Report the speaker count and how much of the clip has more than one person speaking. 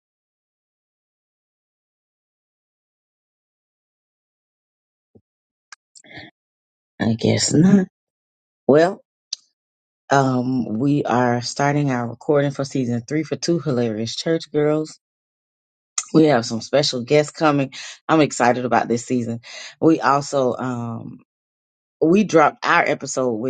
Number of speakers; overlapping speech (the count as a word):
one, no overlap